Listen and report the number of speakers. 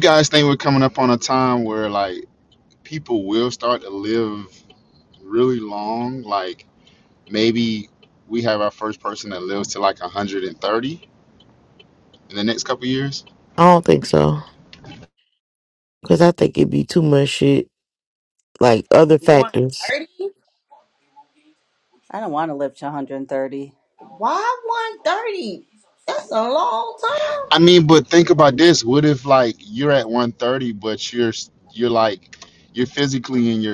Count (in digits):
4